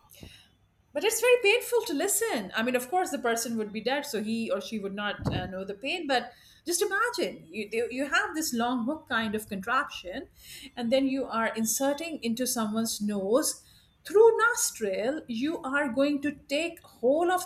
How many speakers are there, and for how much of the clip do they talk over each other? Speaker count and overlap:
1, no overlap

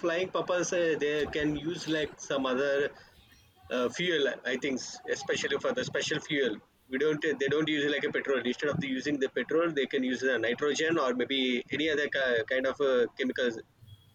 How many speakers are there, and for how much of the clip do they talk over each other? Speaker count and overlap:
1, no overlap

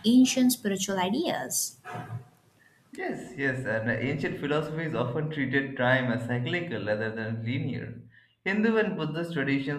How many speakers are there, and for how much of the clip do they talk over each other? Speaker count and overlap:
2, no overlap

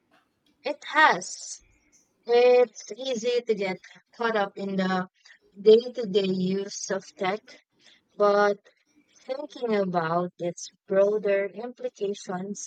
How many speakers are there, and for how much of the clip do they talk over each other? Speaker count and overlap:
1, no overlap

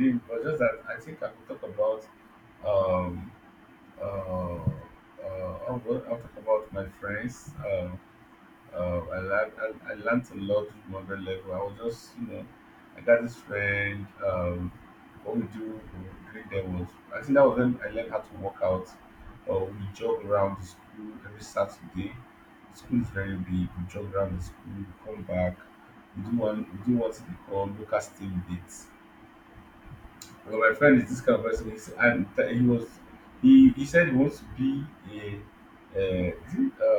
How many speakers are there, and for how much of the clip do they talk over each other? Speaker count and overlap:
1, no overlap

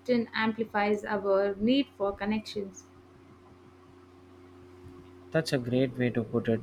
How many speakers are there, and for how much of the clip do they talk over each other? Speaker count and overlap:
2, no overlap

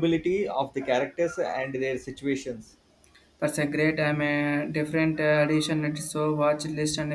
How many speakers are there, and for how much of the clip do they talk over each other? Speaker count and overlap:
2, no overlap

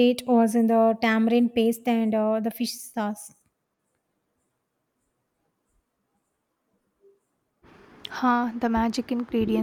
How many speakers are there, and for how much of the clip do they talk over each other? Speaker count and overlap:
2, no overlap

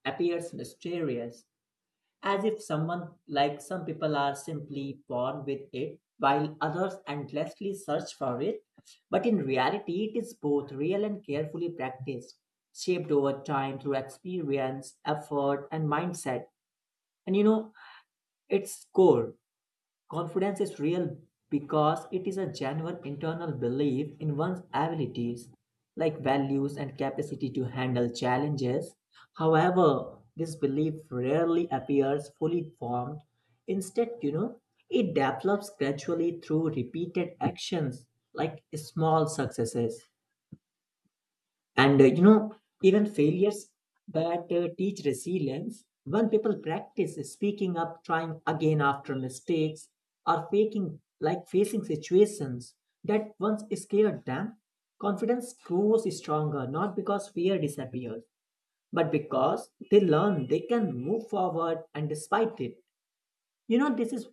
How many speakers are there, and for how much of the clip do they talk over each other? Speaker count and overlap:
1, no overlap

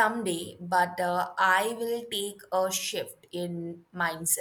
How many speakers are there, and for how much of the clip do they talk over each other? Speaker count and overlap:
1, no overlap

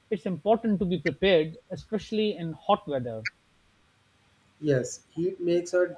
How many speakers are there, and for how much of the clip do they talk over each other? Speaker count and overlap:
2, no overlap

